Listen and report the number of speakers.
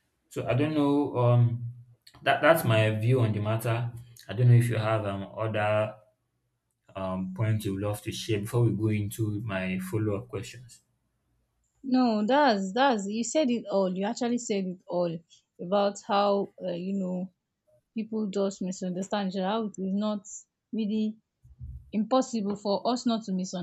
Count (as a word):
two